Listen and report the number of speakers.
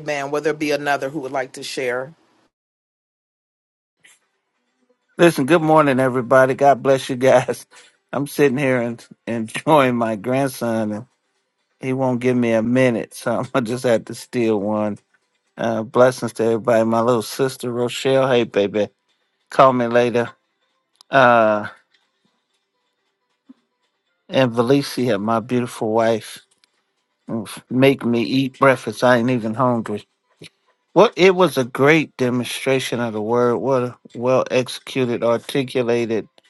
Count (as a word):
two